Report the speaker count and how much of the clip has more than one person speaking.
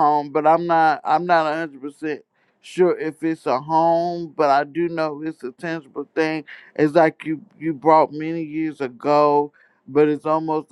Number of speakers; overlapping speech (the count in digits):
1, no overlap